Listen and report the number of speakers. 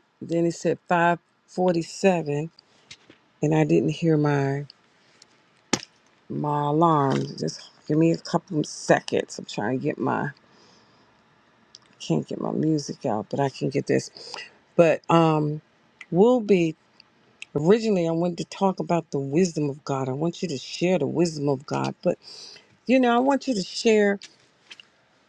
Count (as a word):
one